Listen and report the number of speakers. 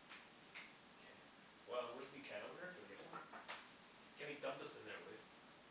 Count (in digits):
1